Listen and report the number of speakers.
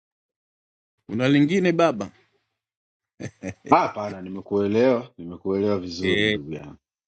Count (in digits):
2